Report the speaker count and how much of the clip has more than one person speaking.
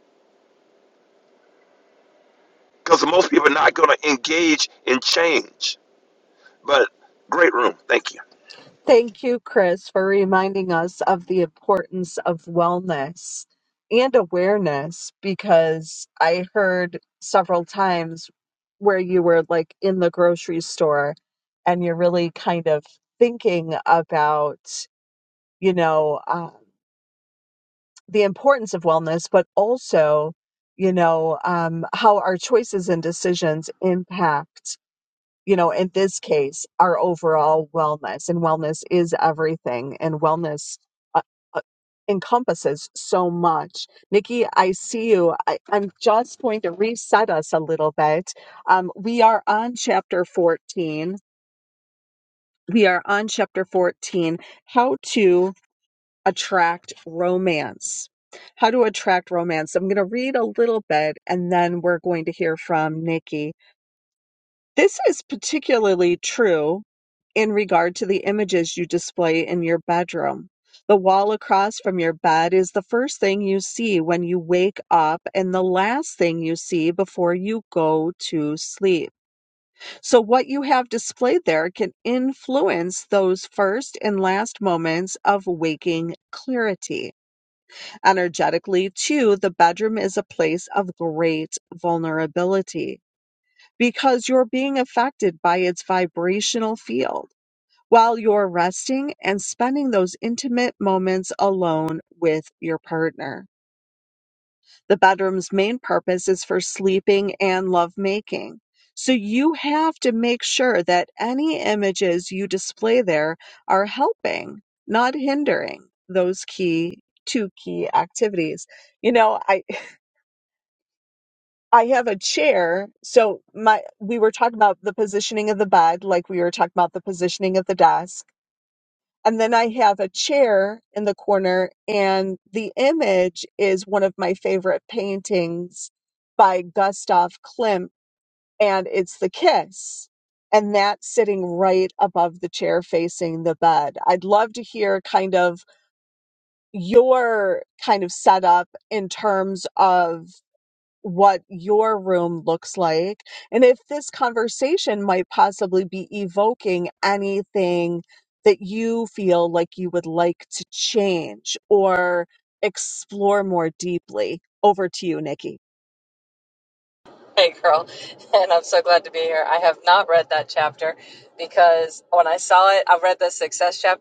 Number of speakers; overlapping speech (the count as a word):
three, no overlap